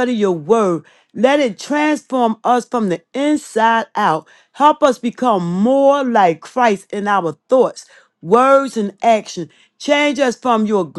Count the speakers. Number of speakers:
one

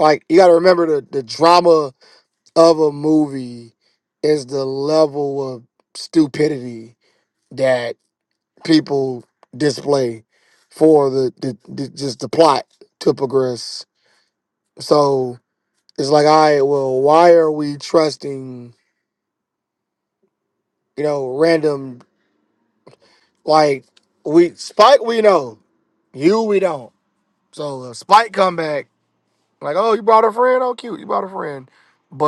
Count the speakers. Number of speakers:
one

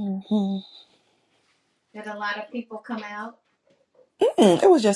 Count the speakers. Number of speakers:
two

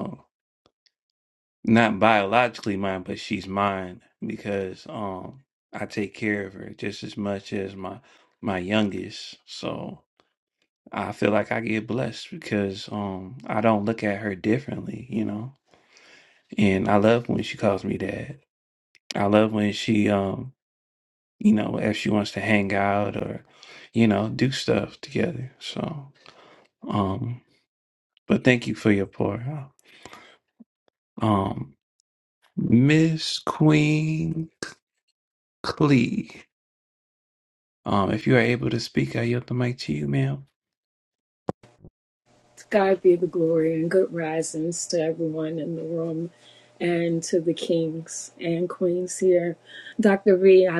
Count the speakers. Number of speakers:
two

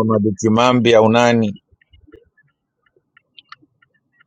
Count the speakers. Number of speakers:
one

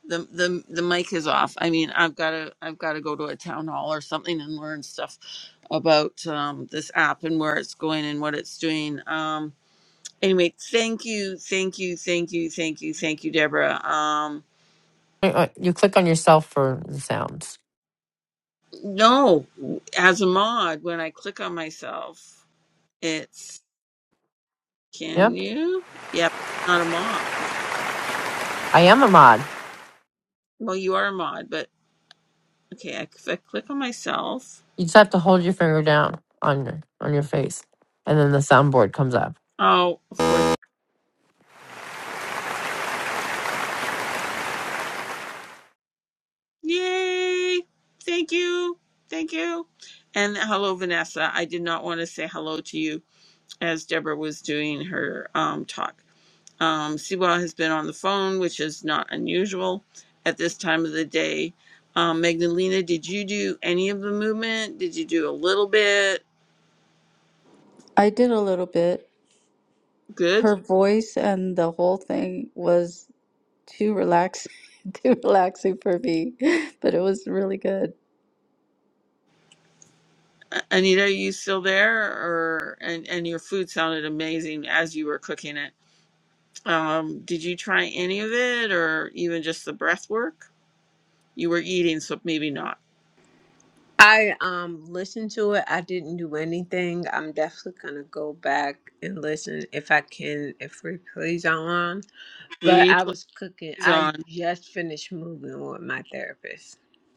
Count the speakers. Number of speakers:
four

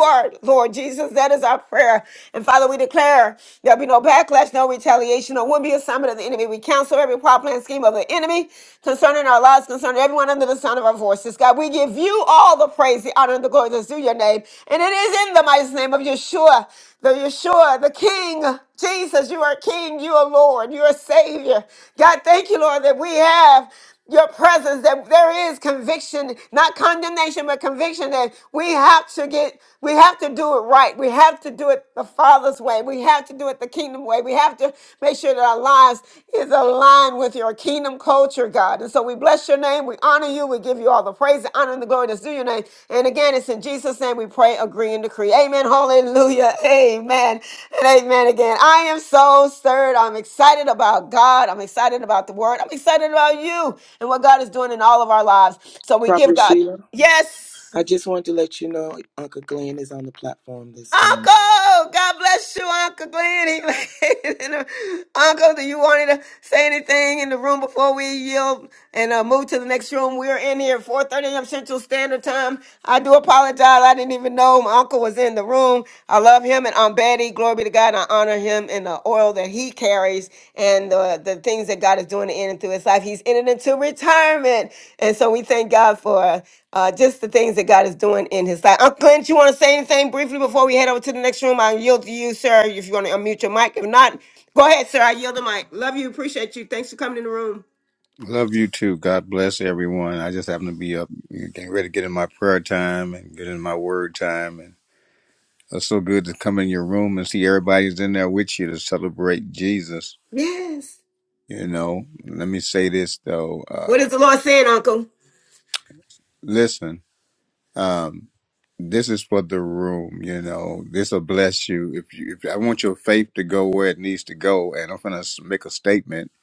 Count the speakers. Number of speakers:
three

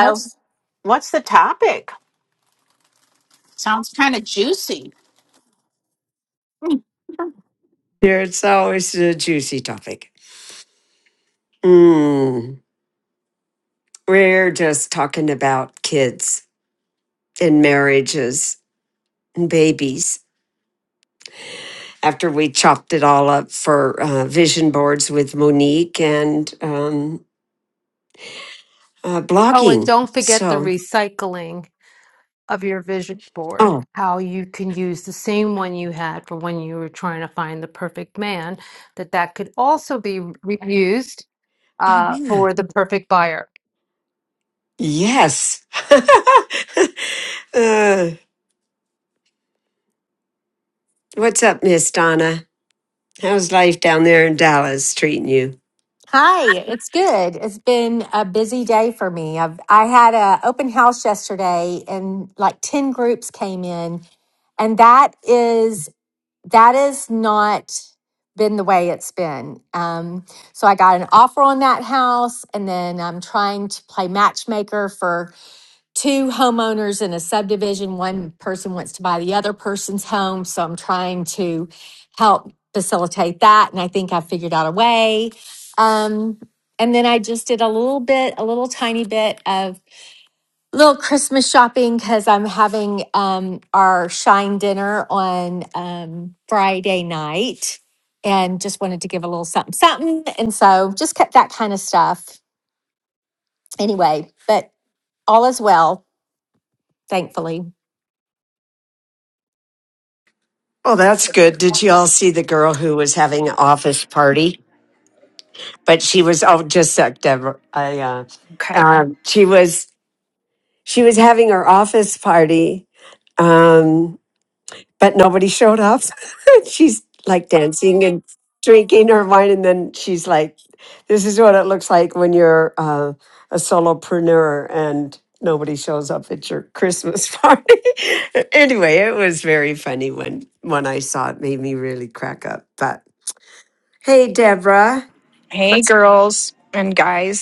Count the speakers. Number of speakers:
five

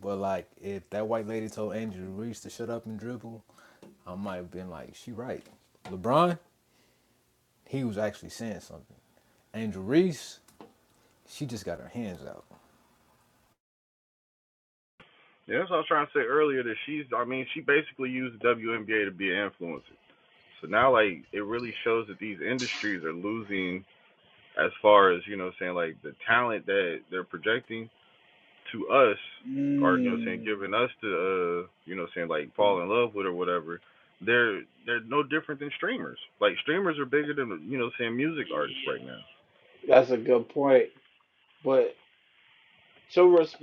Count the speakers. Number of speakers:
three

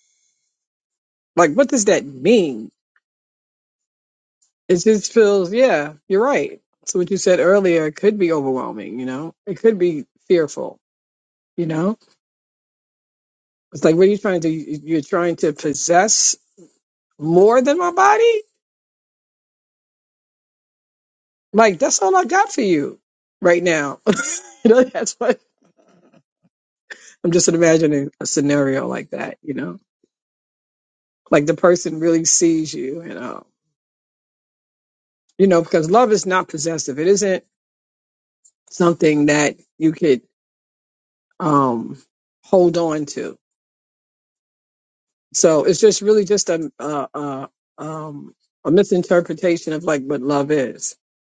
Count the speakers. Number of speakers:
one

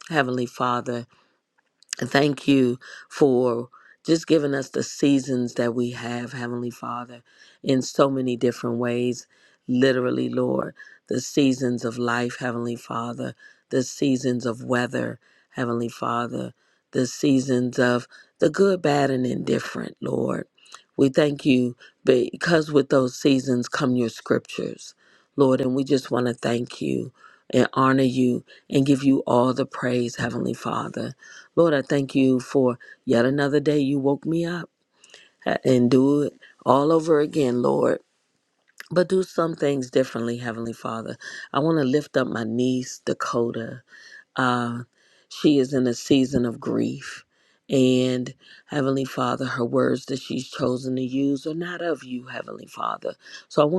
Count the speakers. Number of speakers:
one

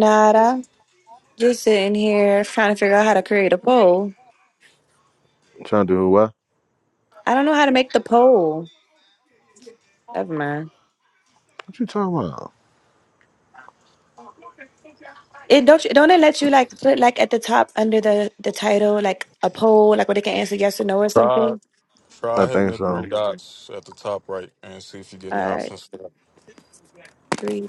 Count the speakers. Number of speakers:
three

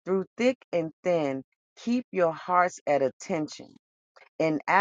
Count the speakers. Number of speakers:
one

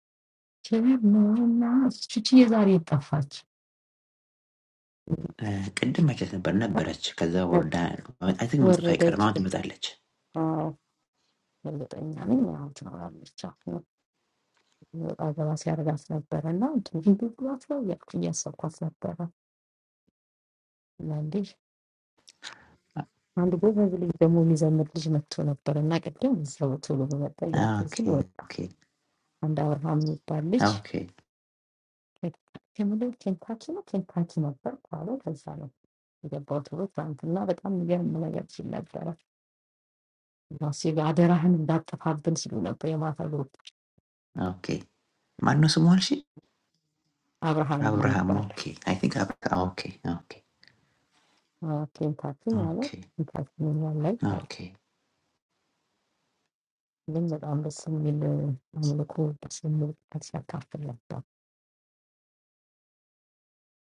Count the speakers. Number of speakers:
two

